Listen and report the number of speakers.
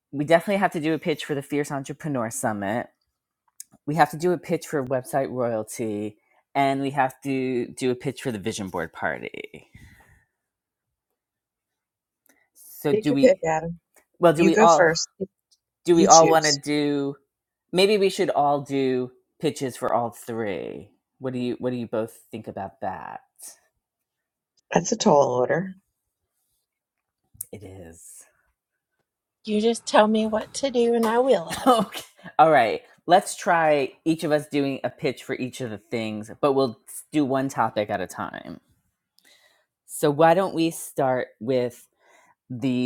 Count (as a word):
three